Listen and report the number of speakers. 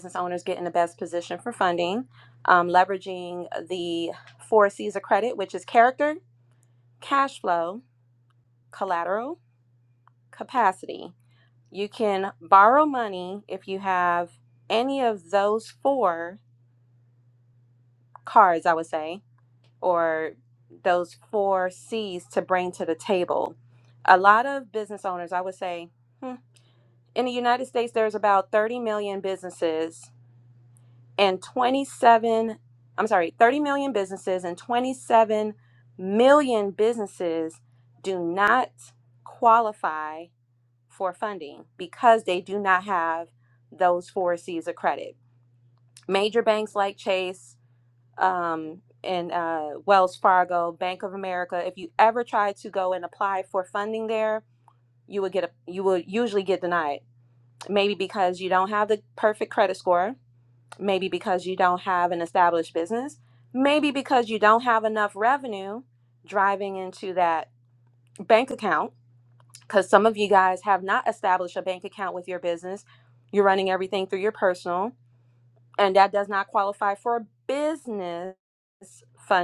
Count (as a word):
one